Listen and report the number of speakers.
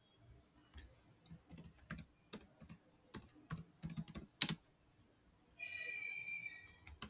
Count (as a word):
zero